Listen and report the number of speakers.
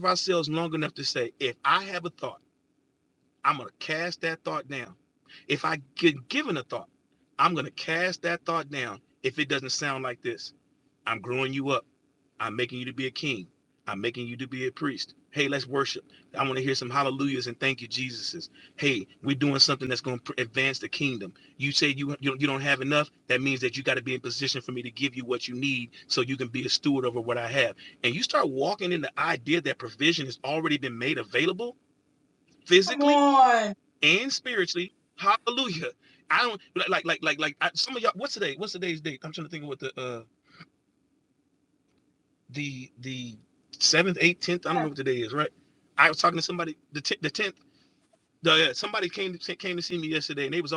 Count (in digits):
2